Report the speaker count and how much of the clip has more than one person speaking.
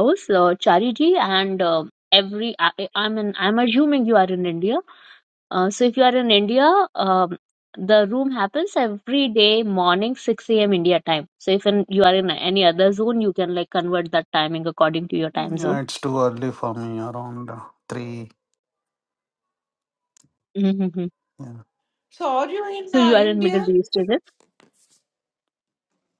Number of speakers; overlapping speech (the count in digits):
3, about 4%